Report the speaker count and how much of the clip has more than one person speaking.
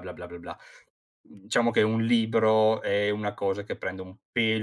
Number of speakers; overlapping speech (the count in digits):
1, no overlap